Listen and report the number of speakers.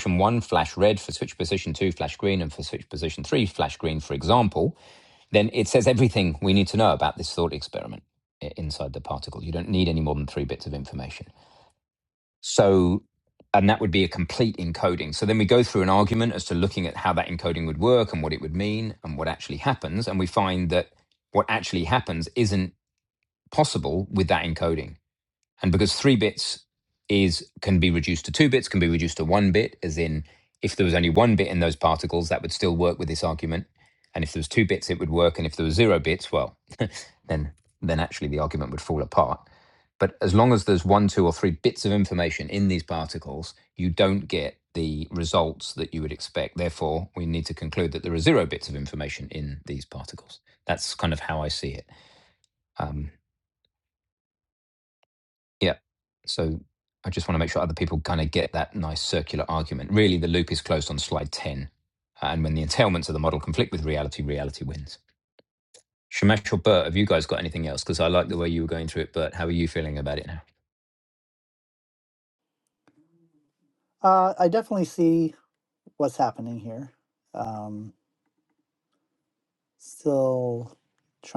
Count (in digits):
2